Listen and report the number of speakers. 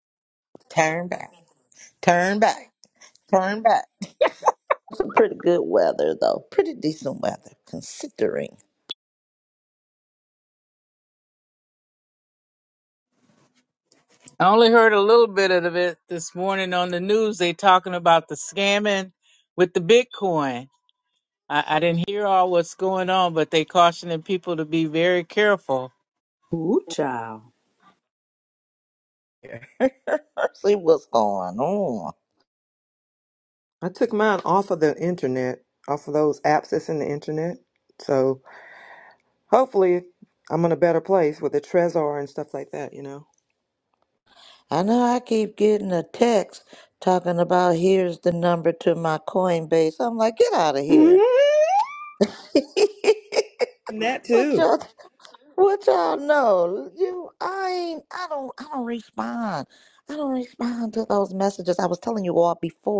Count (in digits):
5